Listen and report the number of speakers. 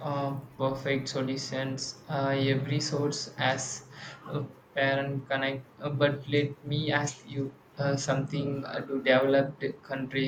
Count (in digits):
1